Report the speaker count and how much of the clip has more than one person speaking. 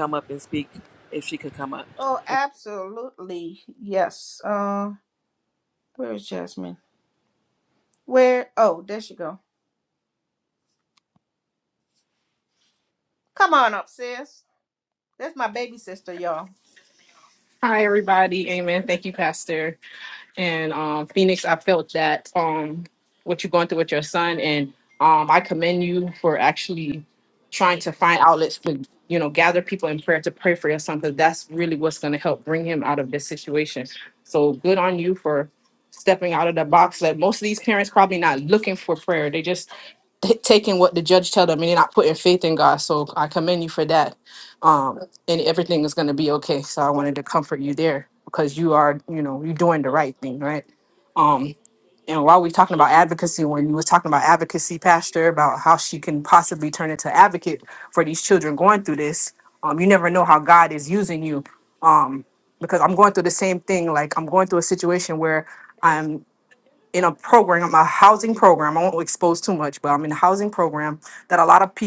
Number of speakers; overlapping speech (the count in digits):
3, no overlap